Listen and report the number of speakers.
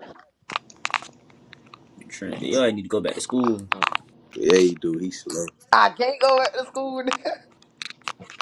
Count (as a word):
three